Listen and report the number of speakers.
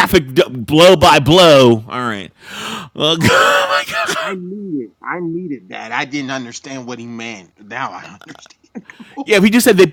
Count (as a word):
two